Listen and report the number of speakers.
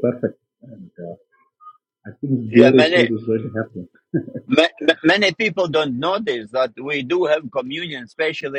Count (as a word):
two